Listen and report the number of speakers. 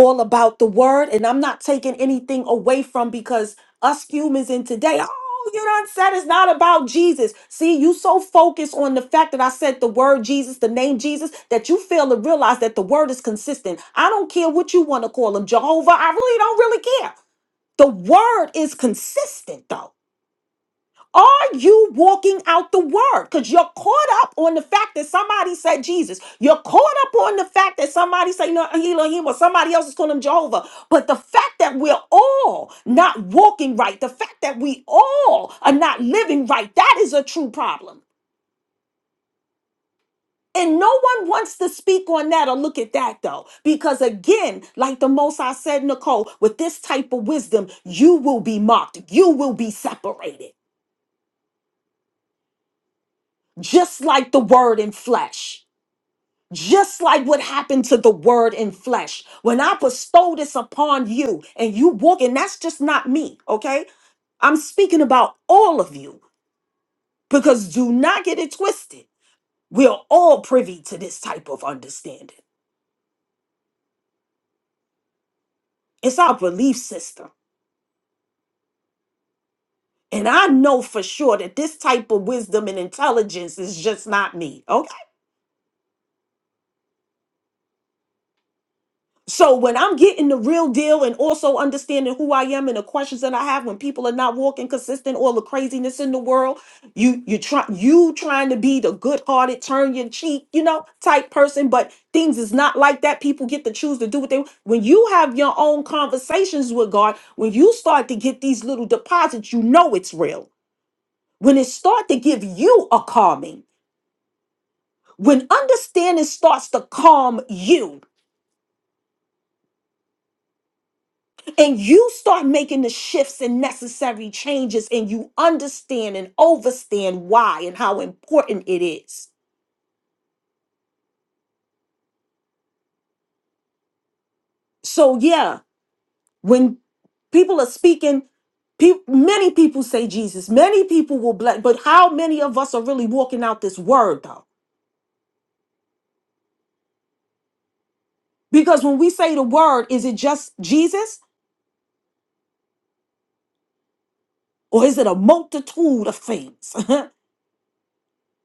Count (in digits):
1